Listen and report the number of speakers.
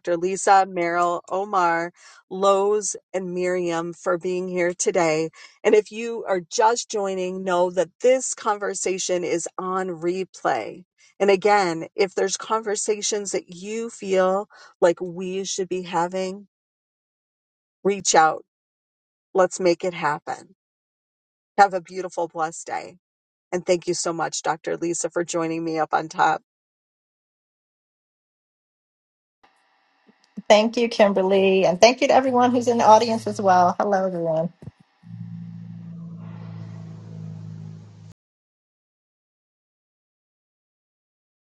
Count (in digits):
2